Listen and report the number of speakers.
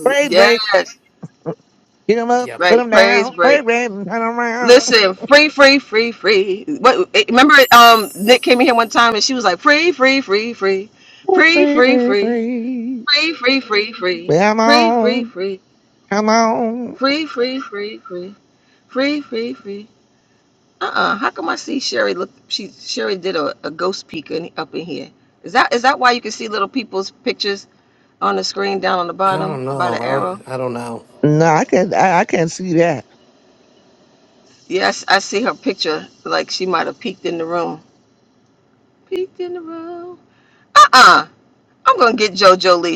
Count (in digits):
3